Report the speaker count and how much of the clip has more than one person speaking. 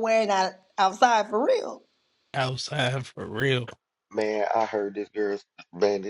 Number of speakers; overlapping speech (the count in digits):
3, no overlap